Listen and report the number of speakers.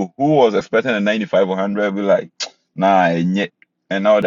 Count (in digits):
1